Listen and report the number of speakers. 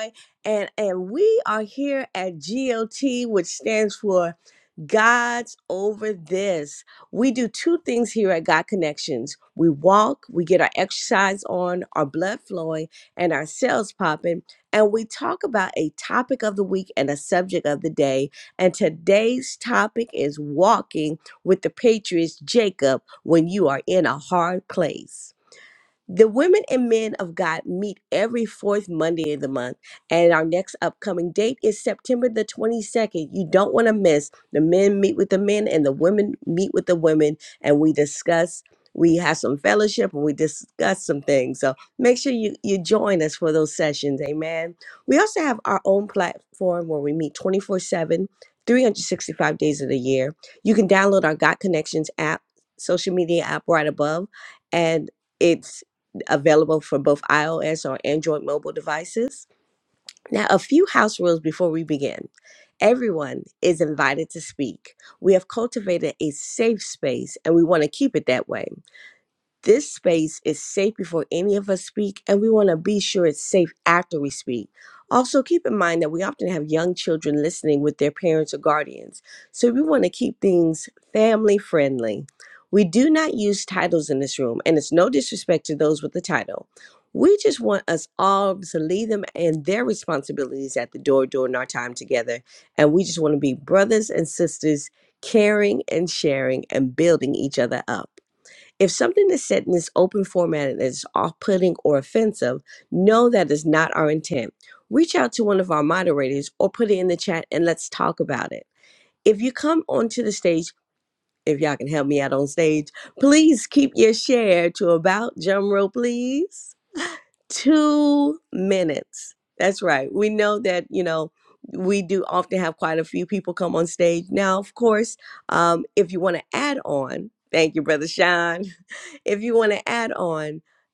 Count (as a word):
one